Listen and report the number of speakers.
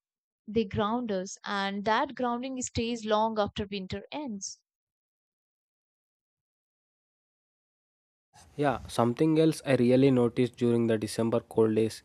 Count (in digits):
2